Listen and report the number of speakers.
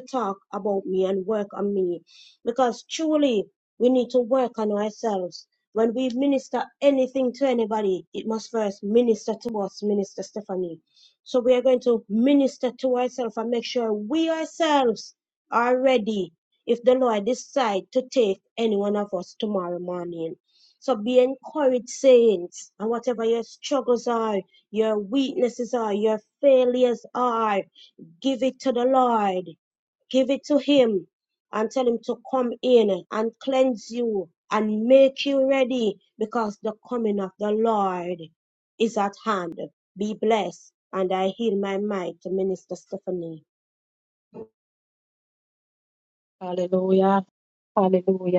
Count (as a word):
two